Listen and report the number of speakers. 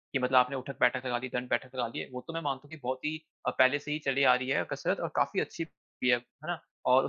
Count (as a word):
one